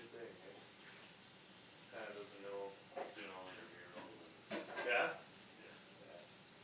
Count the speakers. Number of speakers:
2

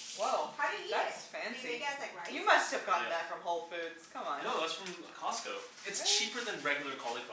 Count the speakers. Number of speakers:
3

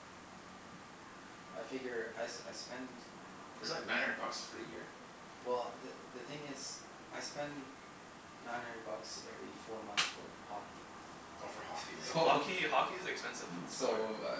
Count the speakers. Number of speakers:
3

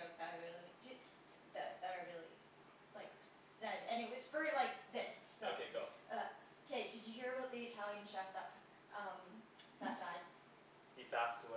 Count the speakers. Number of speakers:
2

